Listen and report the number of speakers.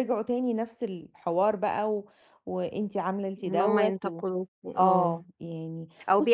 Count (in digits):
2